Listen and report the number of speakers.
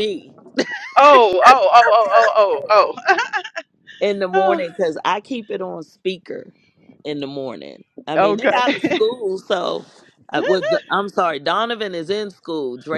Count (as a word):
two